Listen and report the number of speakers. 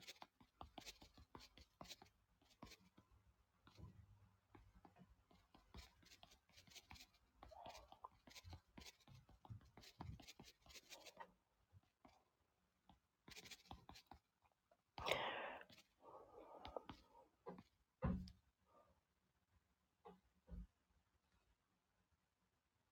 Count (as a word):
zero